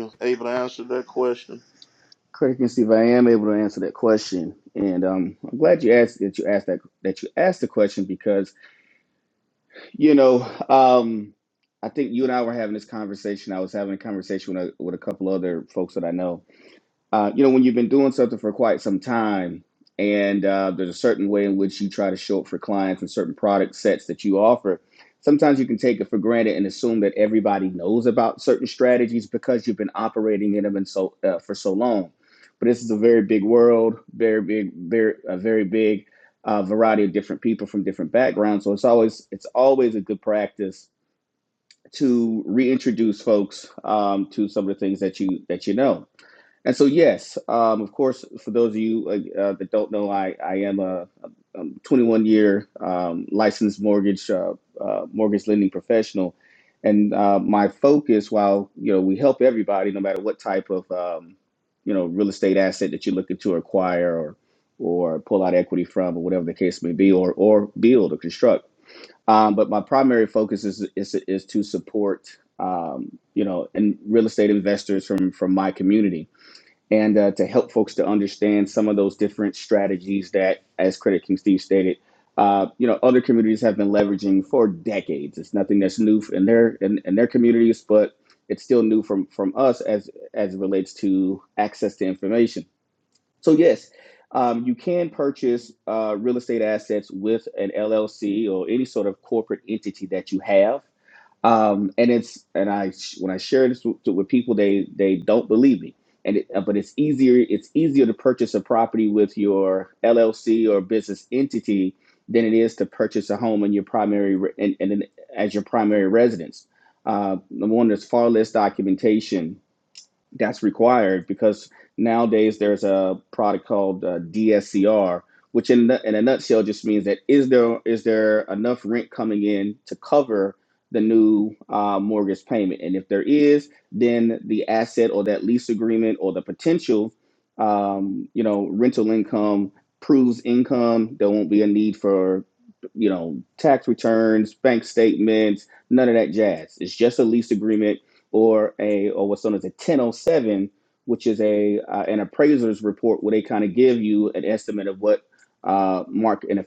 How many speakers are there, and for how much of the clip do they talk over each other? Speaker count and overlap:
2, no overlap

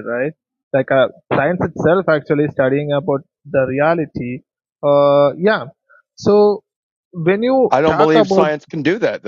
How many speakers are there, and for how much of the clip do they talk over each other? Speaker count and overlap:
2, about 8%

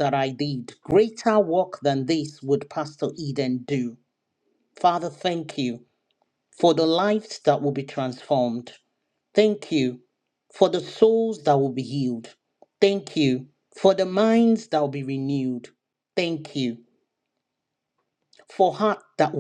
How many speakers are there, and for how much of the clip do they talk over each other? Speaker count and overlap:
1, no overlap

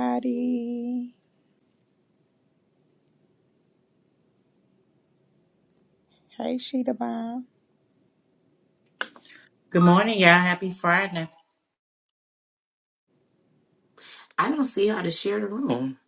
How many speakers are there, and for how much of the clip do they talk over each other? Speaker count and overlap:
3, no overlap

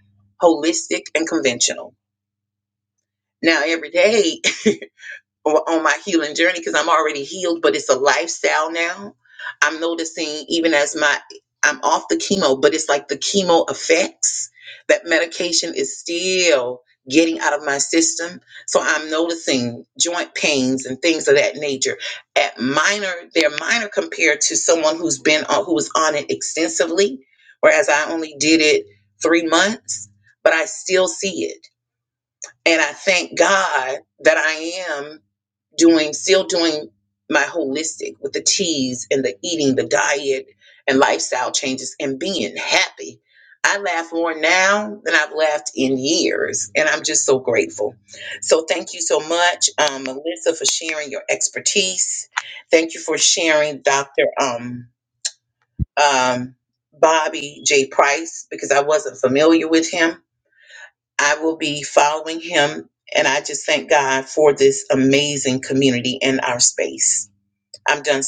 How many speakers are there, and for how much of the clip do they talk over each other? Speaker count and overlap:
1, no overlap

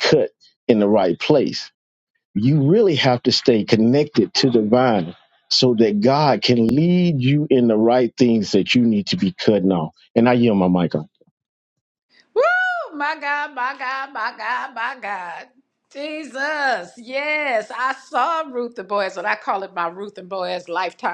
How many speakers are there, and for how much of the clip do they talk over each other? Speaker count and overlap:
2, no overlap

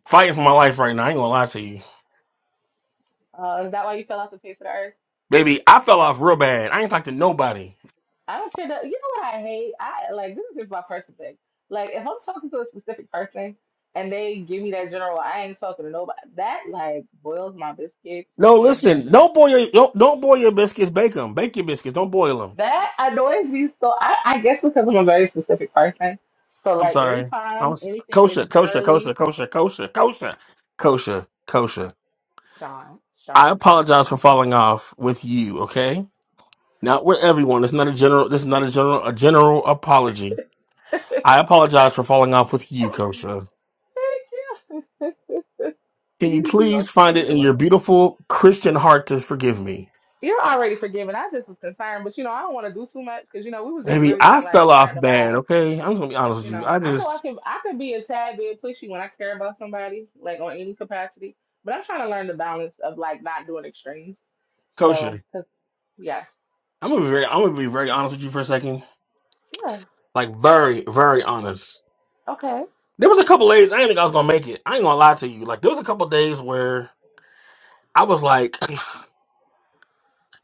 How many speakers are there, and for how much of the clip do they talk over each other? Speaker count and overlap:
2, about 6%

